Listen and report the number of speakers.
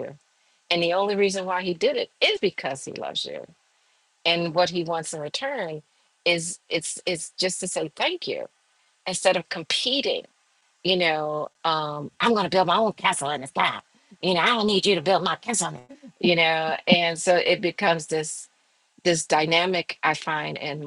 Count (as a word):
one